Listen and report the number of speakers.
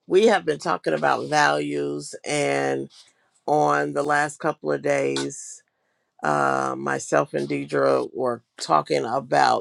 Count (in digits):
1